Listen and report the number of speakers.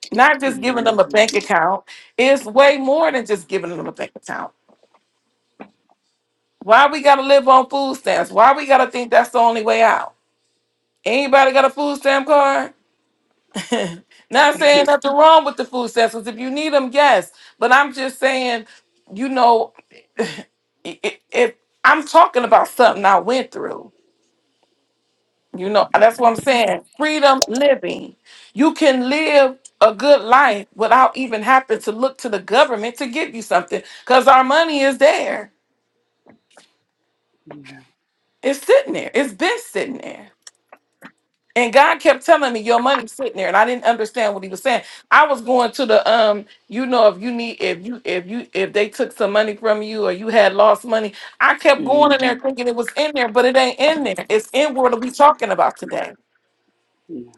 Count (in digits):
2